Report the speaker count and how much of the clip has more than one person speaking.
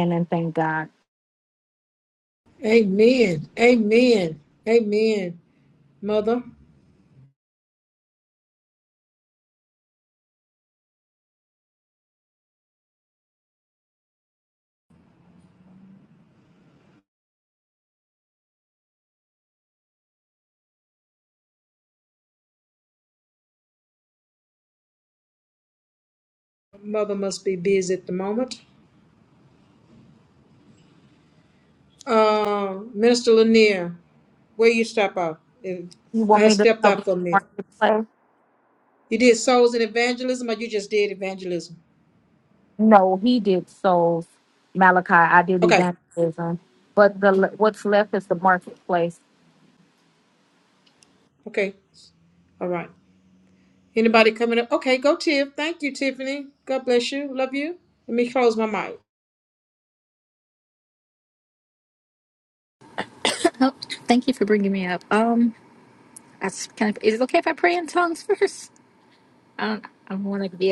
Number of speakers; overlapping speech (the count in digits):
3, about 2%